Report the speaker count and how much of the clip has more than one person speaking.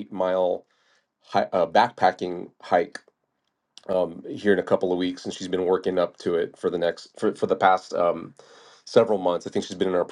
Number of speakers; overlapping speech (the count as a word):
one, no overlap